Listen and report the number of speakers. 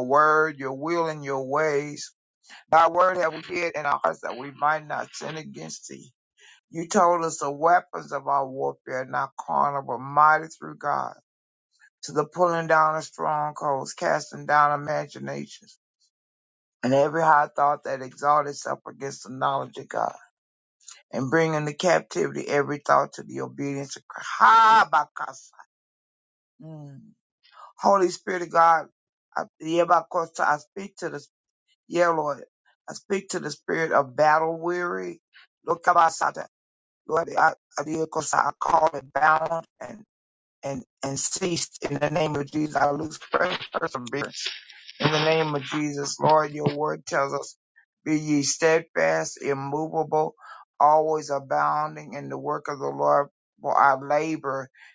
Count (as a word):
one